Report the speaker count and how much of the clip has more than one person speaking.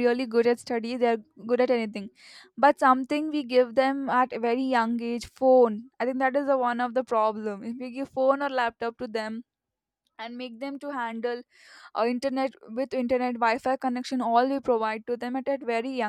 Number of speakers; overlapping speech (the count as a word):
one, no overlap